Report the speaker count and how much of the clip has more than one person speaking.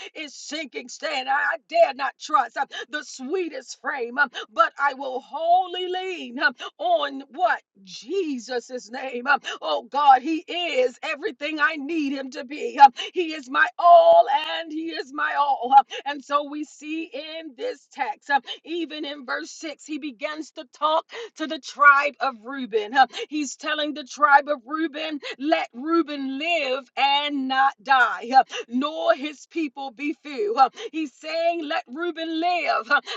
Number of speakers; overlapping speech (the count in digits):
1, no overlap